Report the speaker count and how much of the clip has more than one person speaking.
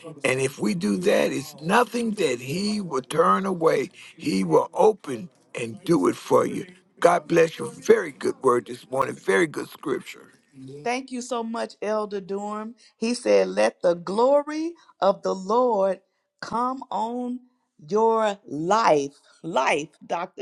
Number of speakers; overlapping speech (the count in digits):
2, no overlap